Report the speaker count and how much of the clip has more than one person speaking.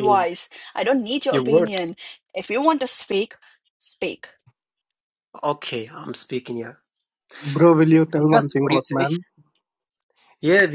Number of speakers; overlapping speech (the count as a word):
three, about 18%